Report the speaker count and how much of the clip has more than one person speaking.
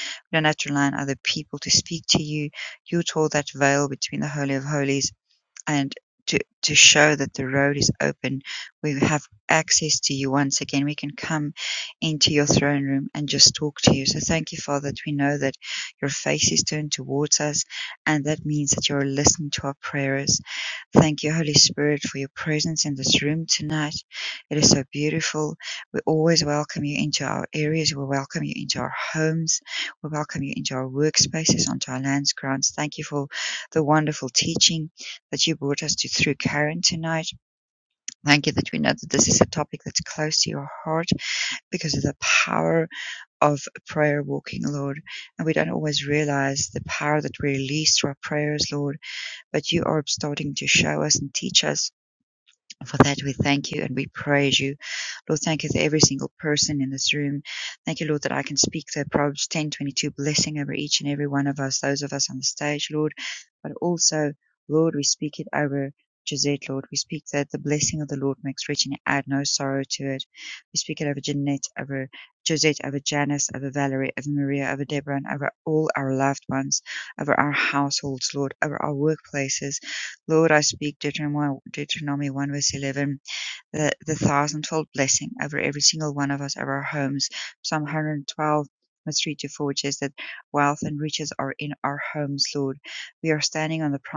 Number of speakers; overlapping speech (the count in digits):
1, no overlap